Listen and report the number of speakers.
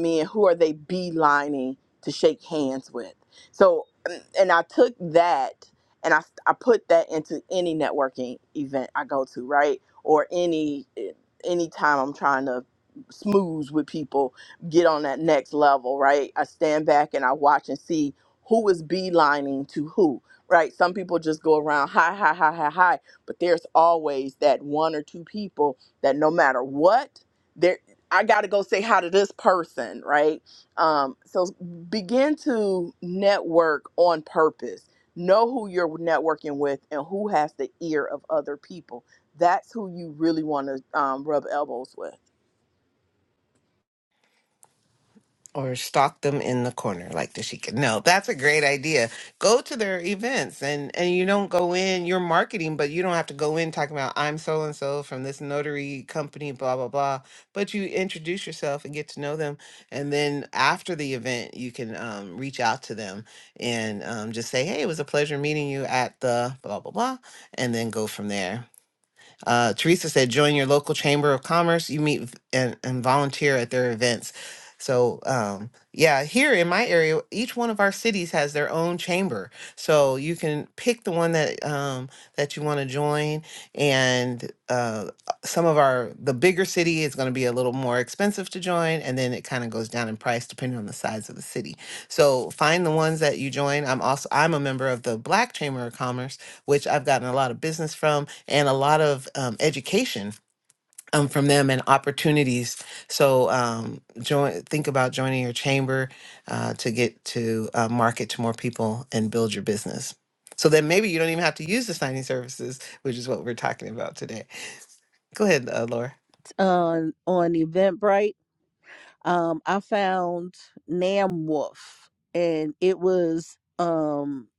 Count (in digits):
3